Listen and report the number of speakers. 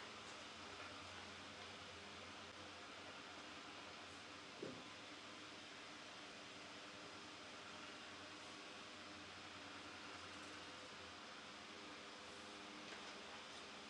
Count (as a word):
zero